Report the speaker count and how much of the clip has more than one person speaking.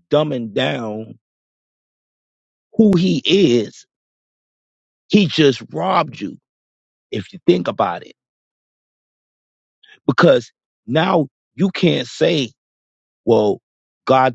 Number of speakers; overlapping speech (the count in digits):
1, no overlap